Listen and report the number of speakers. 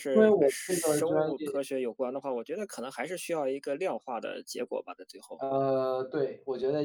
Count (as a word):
two